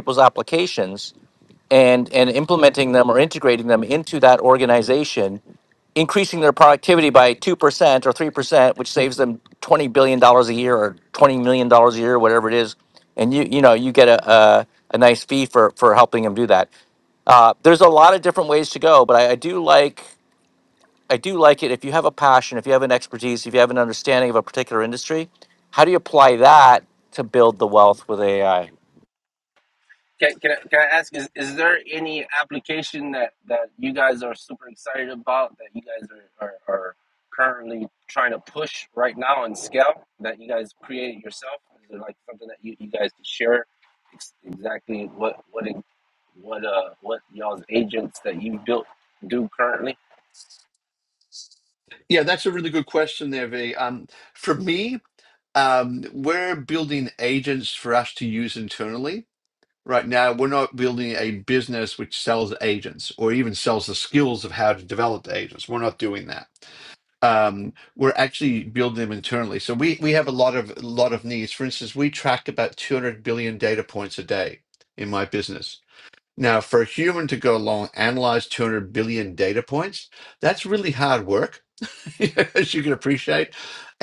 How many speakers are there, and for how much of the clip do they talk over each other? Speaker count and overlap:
three, no overlap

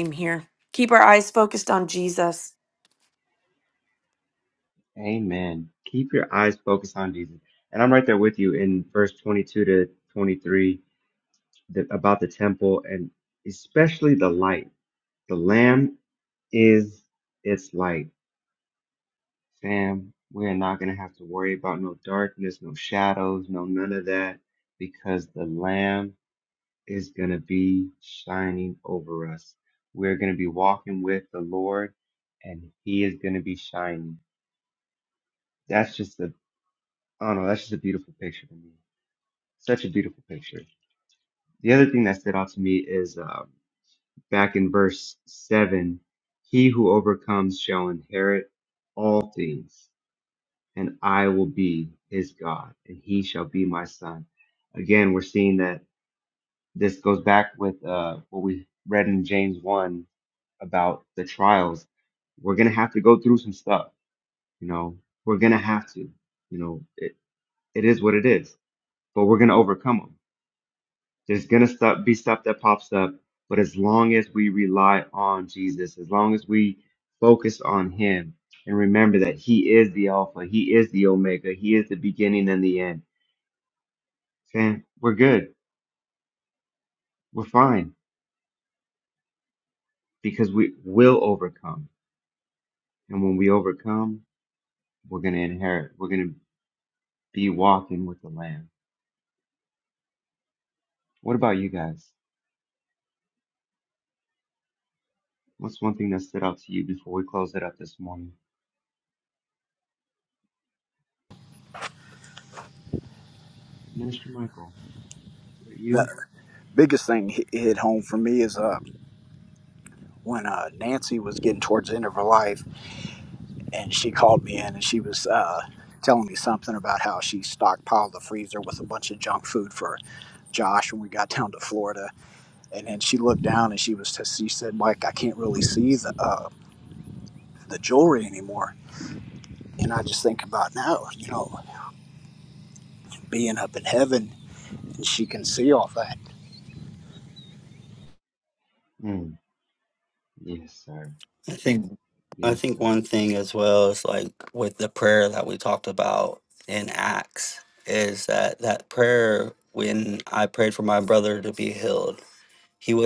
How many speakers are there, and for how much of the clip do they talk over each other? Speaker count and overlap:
four, under 1%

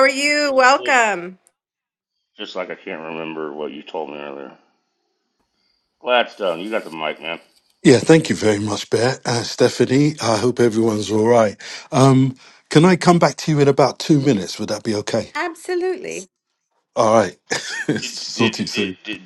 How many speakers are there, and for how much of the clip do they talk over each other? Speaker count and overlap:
three, about 5%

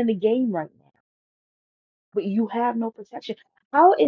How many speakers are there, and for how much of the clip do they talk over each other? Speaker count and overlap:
one, no overlap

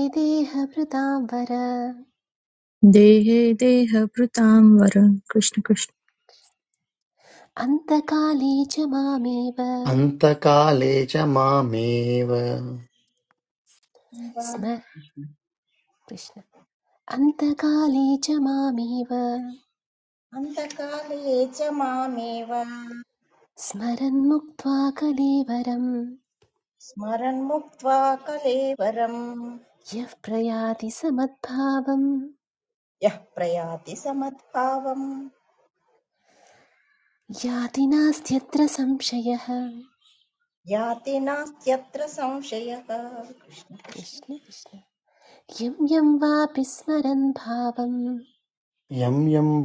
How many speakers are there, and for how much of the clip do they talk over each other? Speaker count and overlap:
four, no overlap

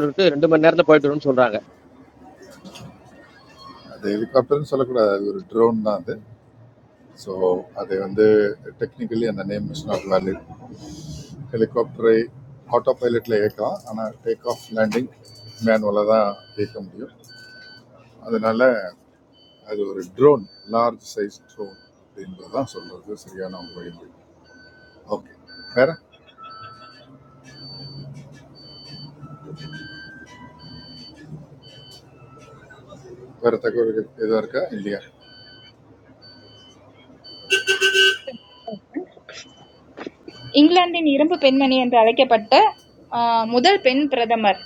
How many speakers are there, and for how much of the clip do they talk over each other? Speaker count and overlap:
three, no overlap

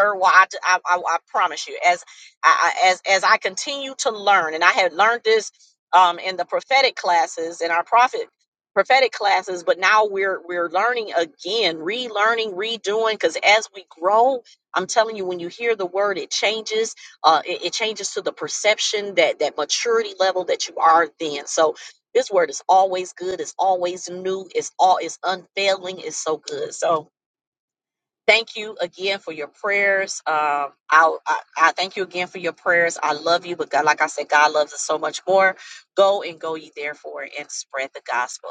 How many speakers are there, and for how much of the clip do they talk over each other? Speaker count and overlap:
one, no overlap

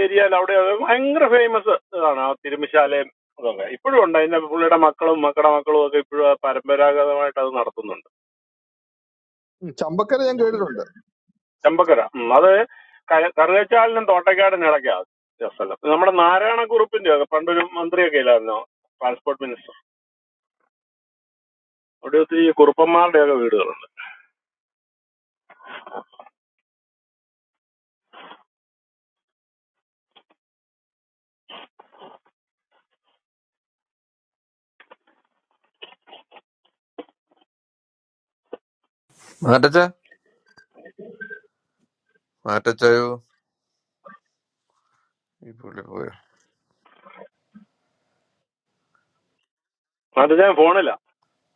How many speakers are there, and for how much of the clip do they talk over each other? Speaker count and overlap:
three, no overlap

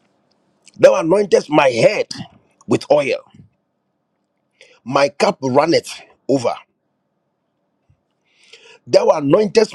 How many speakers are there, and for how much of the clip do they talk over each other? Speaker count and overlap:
one, no overlap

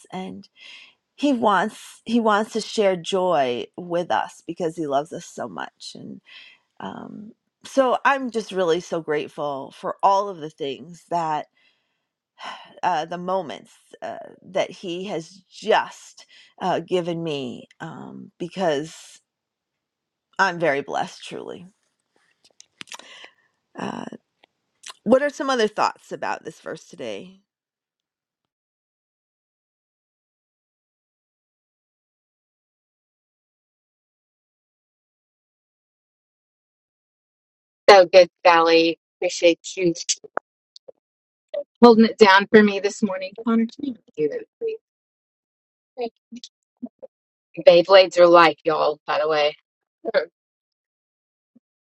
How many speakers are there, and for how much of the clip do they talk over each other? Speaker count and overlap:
two, no overlap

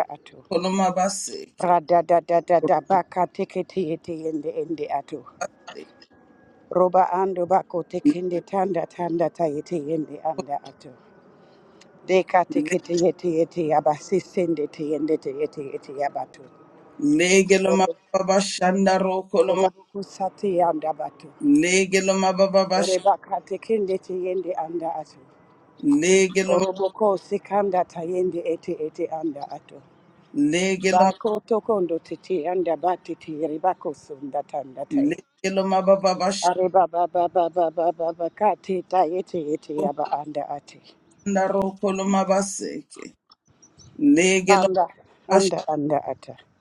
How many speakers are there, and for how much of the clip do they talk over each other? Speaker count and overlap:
two, about 4%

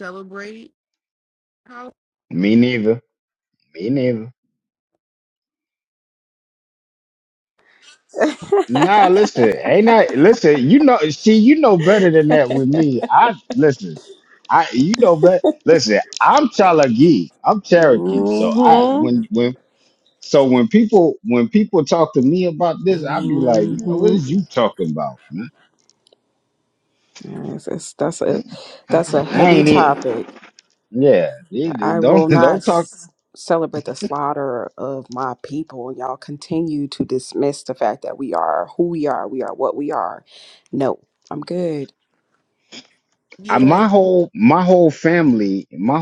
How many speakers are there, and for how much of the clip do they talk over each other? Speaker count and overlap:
three, about 9%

